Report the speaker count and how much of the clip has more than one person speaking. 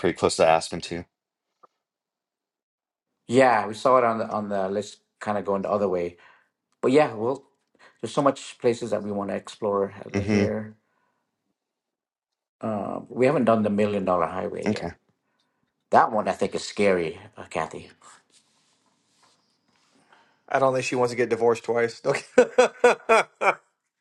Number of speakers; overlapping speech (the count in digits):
3, about 2%